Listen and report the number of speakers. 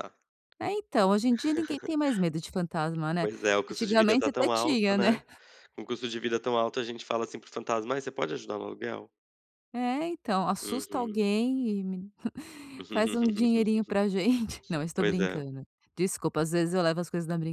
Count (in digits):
2